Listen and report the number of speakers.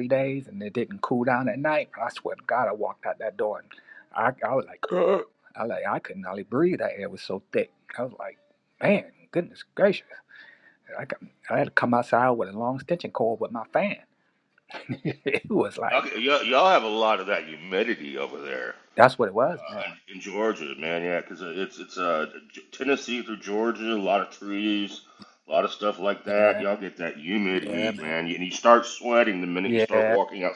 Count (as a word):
two